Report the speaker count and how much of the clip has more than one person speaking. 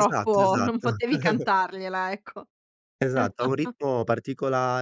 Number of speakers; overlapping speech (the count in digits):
2, about 19%